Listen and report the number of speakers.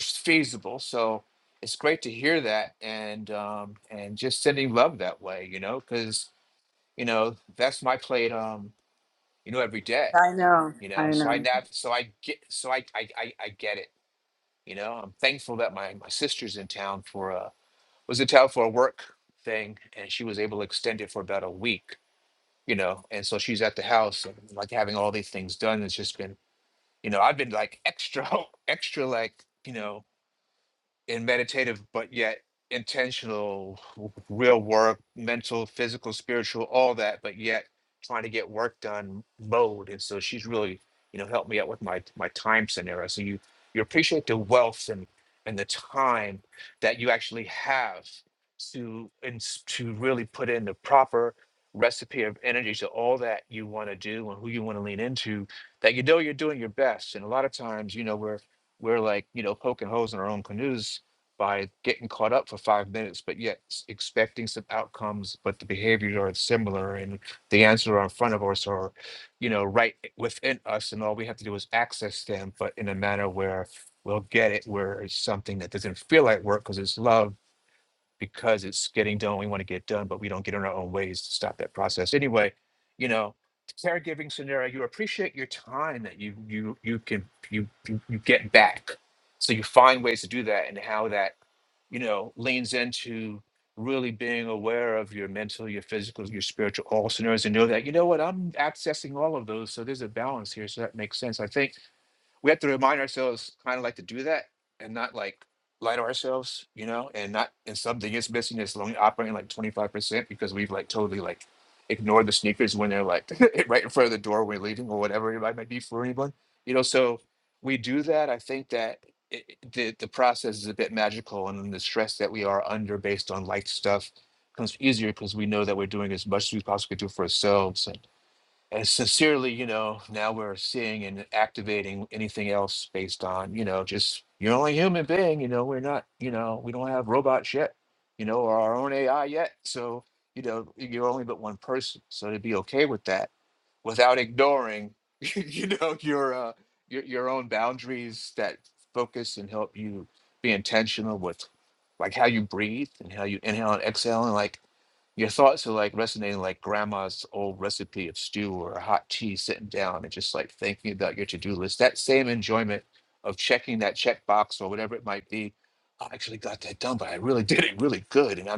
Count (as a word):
two